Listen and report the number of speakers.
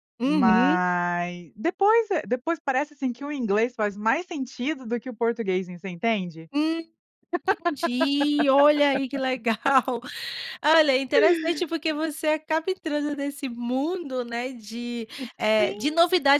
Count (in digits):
2